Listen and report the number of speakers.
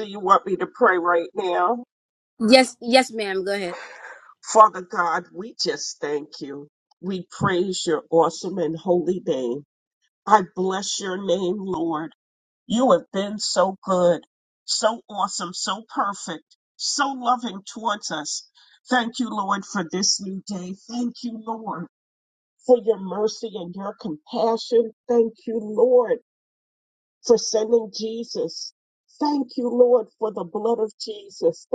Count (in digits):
2